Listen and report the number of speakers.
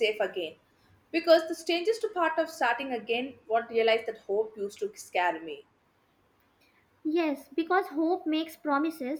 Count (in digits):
2